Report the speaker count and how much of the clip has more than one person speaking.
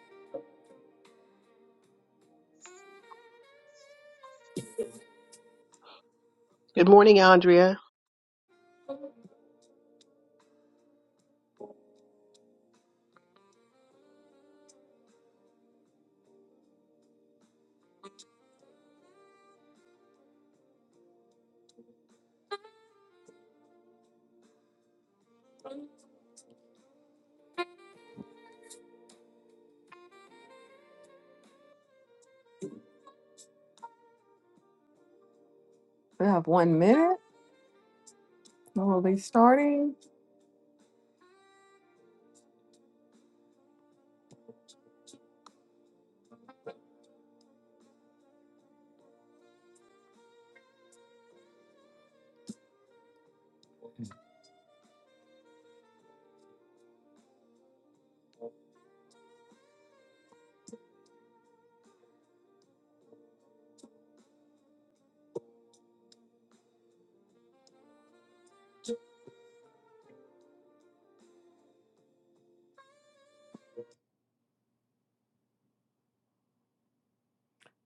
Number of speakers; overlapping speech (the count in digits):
2, no overlap